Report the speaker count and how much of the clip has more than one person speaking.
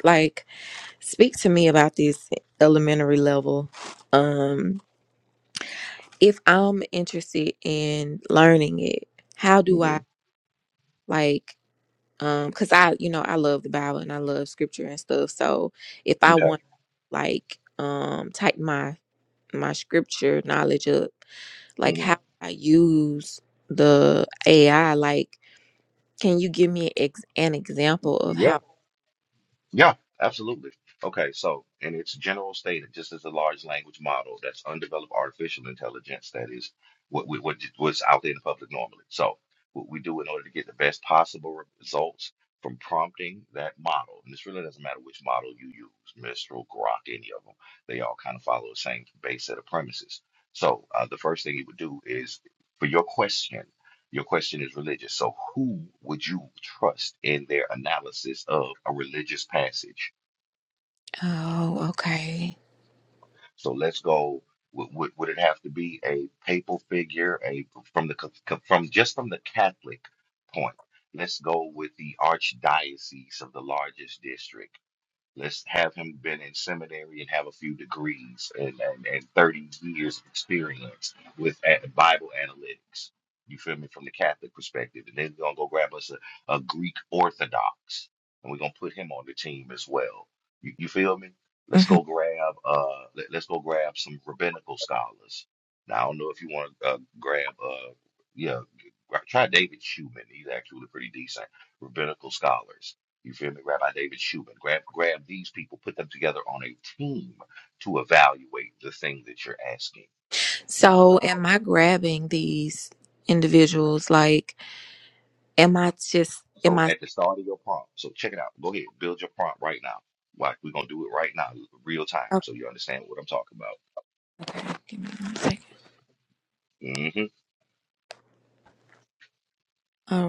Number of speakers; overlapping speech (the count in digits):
2, about 1%